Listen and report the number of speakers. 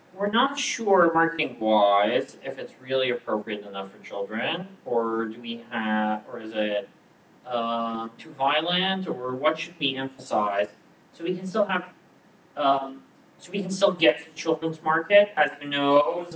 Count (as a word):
one